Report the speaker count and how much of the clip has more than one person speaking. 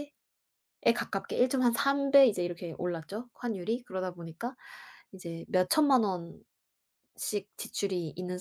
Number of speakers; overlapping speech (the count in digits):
1, no overlap